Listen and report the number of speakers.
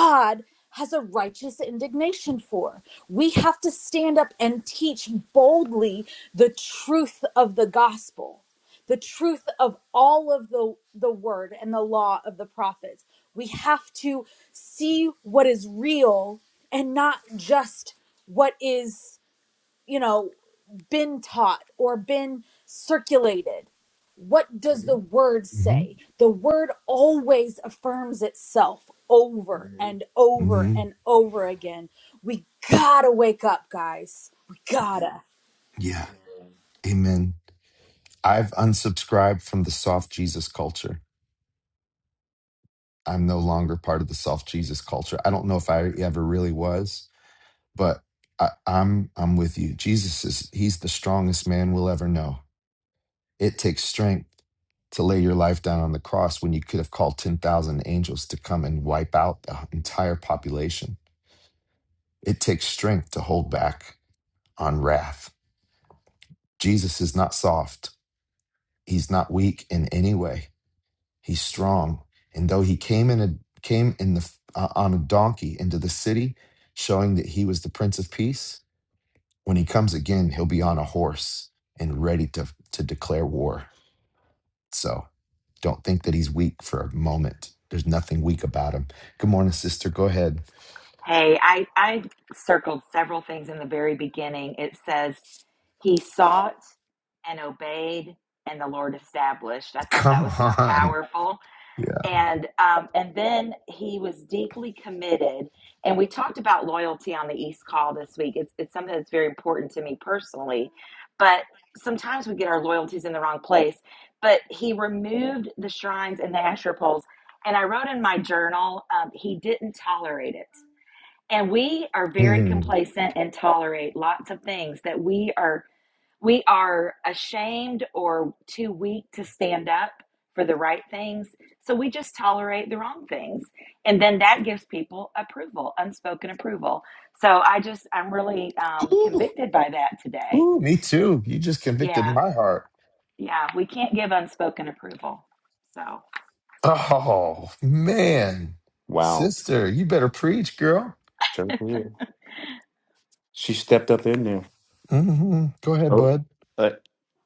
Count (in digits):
4